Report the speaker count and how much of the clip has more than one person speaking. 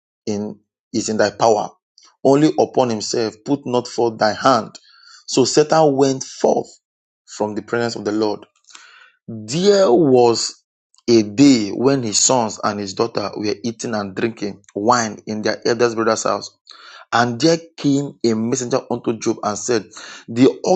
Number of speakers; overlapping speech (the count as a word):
one, no overlap